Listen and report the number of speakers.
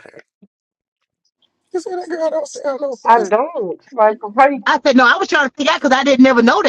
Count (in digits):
3